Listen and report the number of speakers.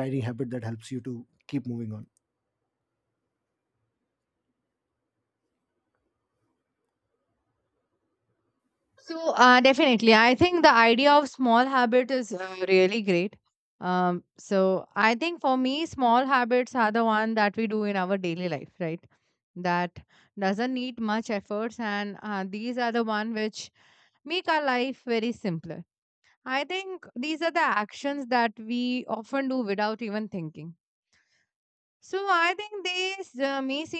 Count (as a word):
two